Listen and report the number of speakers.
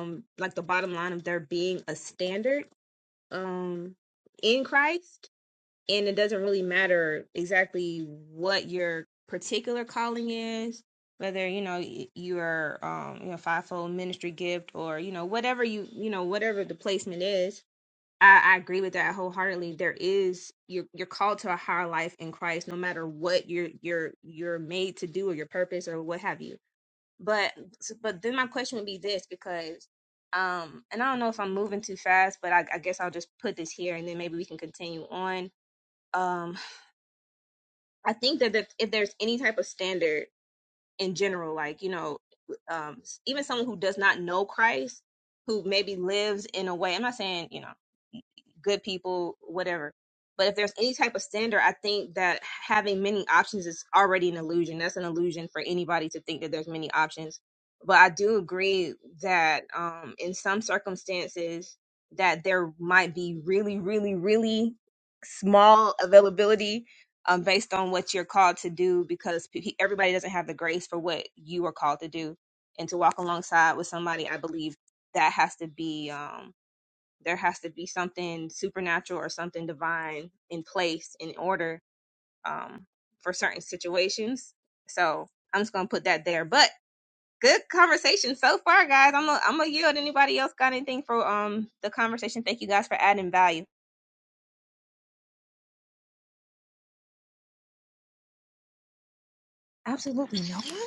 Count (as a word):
one